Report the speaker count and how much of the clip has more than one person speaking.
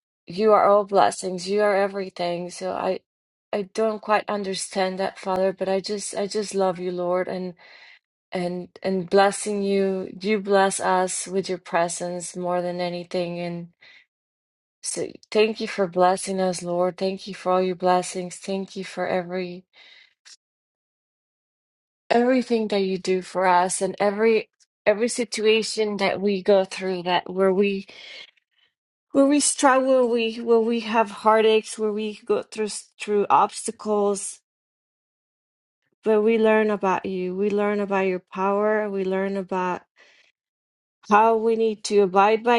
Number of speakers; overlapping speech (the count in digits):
1, no overlap